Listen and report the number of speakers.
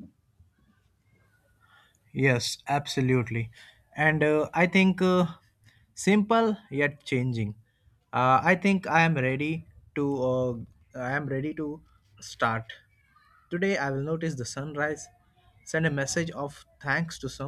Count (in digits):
1